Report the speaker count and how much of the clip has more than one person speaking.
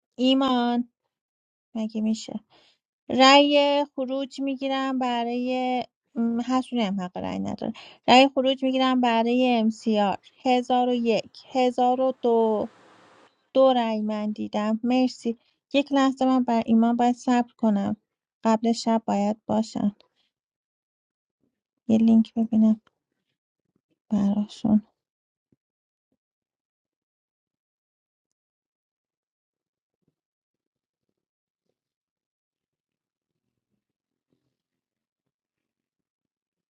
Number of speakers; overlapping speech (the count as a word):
one, no overlap